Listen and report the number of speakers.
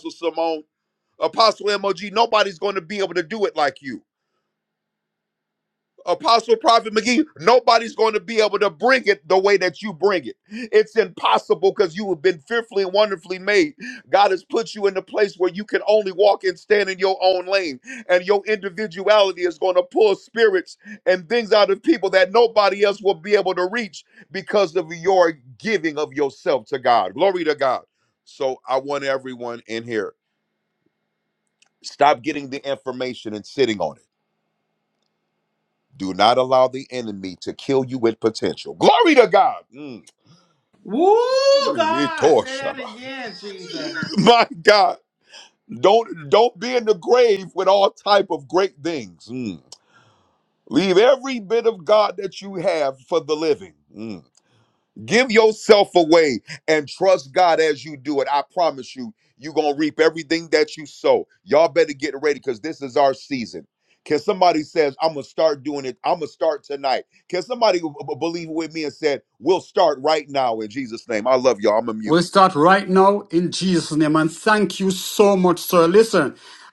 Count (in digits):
3